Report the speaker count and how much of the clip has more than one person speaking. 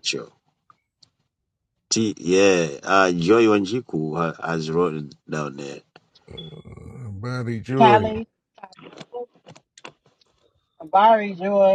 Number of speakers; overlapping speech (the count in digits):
3, about 3%